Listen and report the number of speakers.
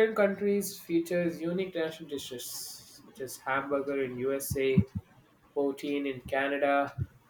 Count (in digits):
1